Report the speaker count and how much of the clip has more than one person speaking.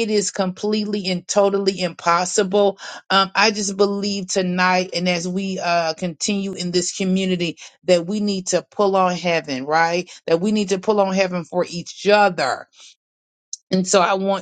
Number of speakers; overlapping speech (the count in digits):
1, no overlap